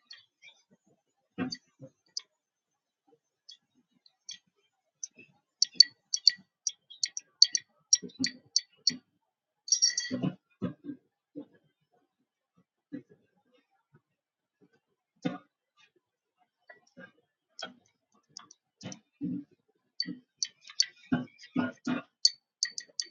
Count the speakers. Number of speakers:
0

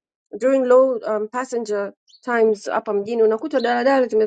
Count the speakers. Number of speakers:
1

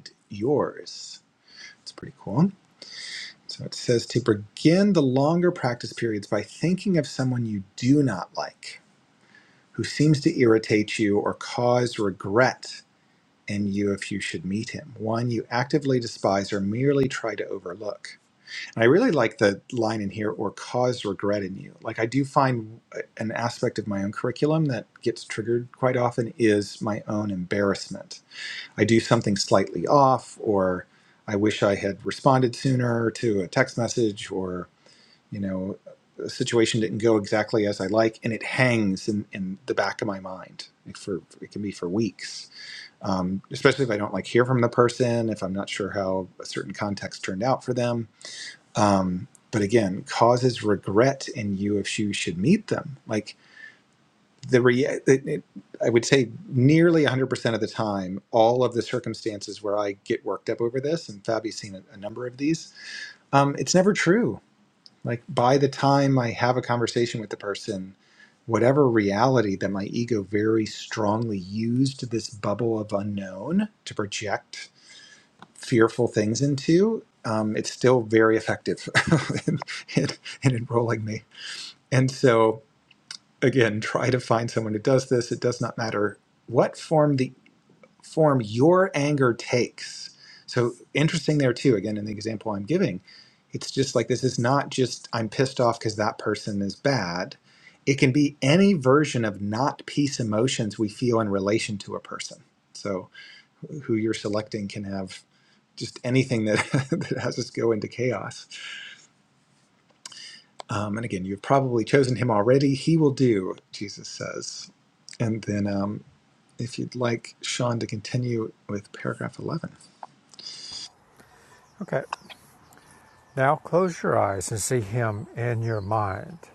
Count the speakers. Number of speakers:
2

